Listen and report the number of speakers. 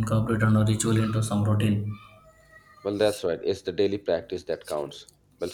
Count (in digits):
2